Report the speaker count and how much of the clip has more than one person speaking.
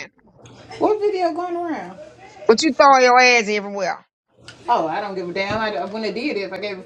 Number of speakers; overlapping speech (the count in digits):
2, no overlap